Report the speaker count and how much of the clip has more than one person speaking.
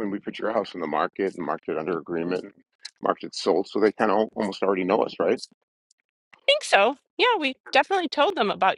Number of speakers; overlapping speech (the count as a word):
two, no overlap